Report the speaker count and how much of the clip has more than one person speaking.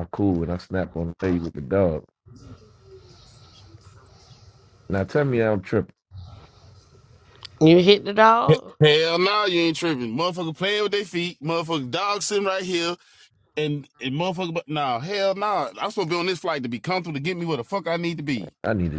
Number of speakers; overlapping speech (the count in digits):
3, about 1%